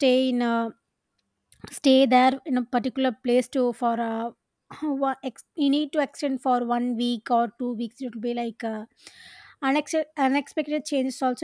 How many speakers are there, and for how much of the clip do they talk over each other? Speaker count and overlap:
one, no overlap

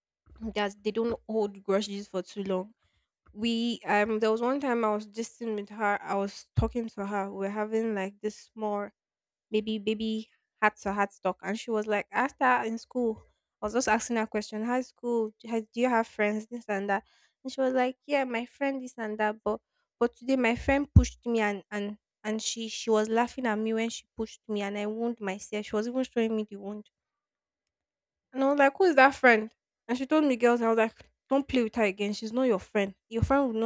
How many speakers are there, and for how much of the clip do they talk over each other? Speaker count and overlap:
one, no overlap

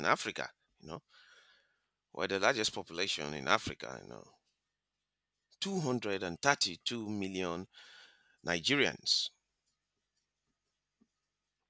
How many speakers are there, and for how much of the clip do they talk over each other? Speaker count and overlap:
one, no overlap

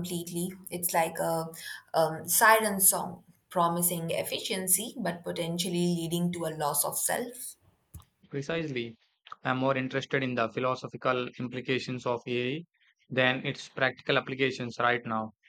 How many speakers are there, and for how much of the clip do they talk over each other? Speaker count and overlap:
two, no overlap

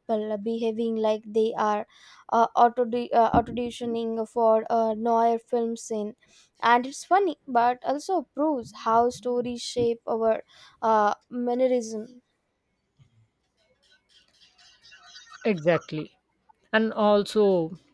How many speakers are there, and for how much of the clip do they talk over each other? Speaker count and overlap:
two, no overlap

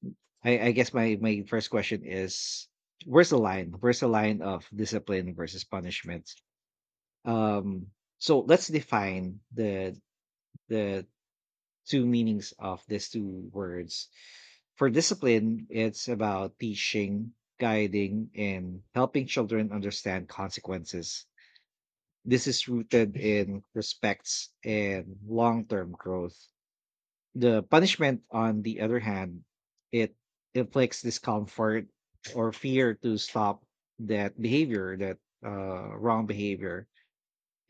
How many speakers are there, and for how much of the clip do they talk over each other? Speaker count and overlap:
one, no overlap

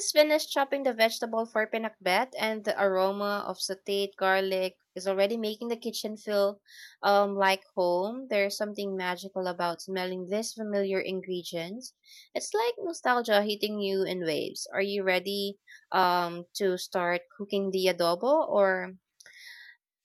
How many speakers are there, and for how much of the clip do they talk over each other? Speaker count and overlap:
one, no overlap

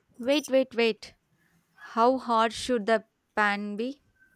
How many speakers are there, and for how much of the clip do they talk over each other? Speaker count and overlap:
one, no overlap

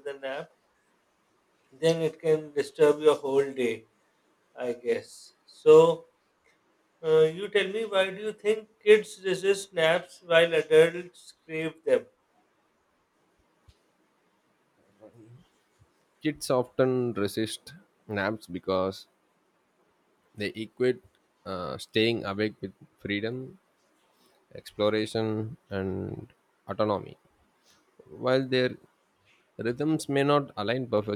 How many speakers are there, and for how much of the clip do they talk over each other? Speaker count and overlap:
two, no overlap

